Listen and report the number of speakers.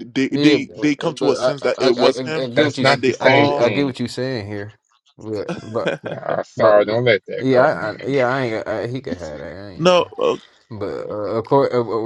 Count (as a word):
three